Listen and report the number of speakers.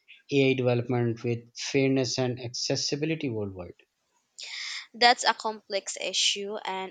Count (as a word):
two